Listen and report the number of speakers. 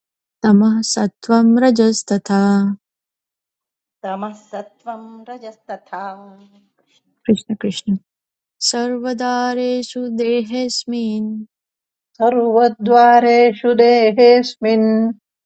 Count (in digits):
3